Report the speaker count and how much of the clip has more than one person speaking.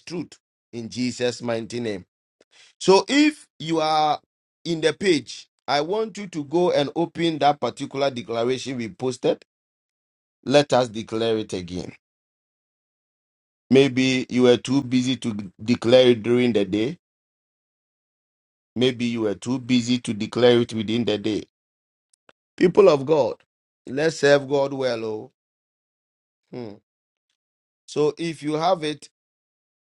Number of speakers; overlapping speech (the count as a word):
one, no overlap